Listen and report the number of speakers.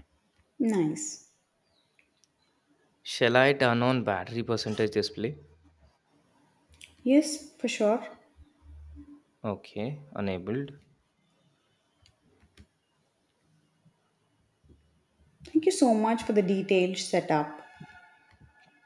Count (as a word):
two